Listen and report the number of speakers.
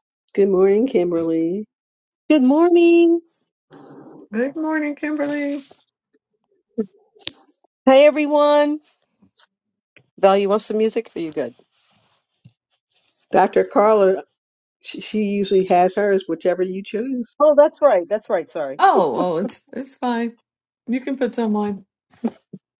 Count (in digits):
3